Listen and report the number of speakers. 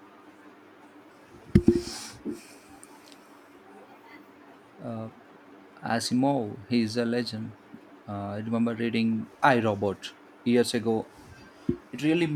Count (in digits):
1